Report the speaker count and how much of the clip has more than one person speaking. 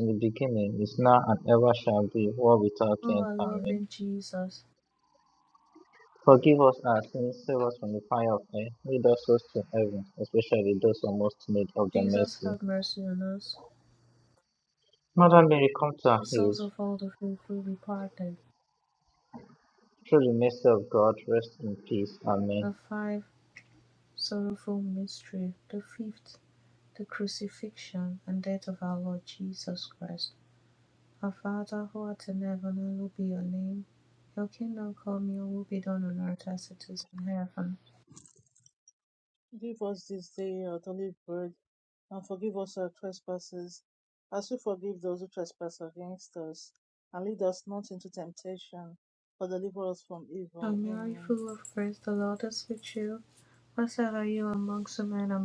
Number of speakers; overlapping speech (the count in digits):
3, about 4%